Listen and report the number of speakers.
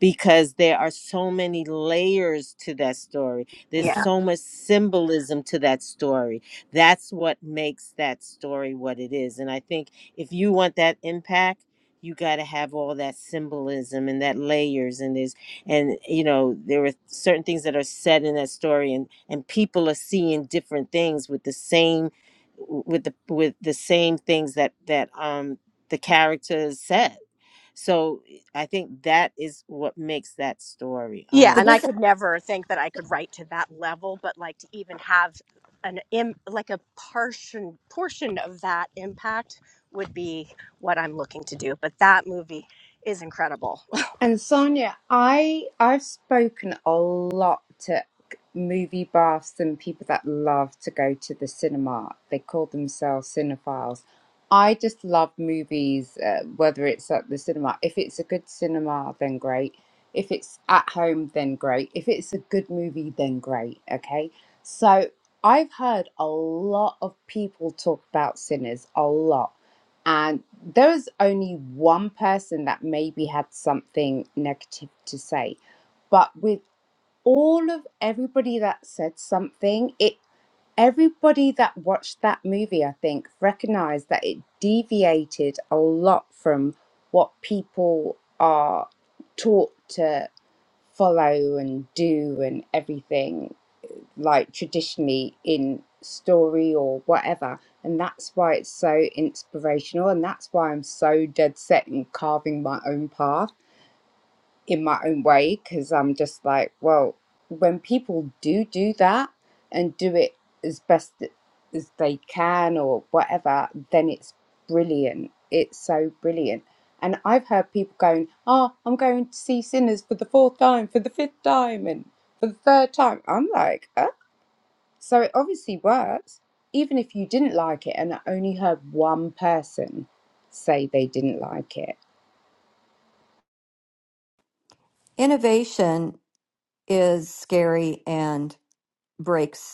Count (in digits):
4